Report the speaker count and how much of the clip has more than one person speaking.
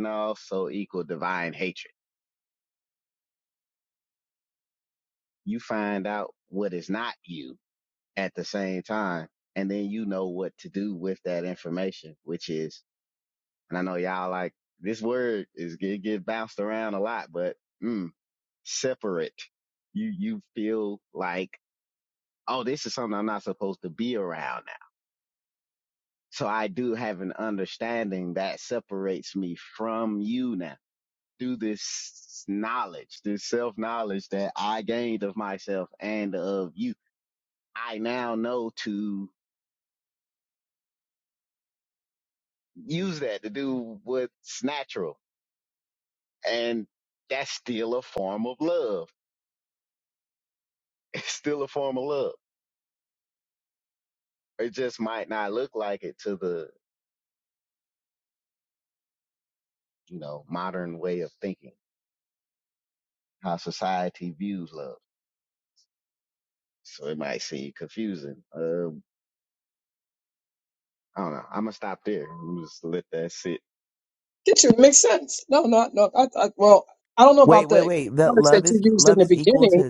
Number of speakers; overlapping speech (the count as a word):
three, about 3%